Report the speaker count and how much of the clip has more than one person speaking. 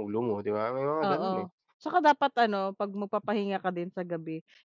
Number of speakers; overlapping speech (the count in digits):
2, about 9%